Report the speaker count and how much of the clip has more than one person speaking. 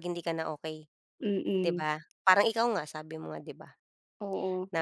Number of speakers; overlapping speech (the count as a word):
two, about 6%